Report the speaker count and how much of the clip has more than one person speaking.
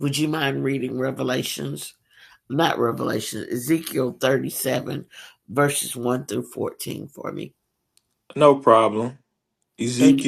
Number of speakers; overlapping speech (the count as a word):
two, about 3%